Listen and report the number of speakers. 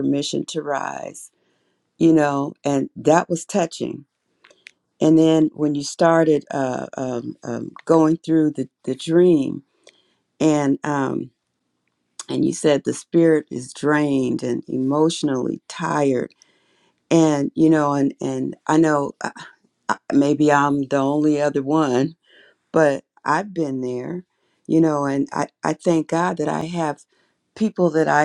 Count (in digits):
1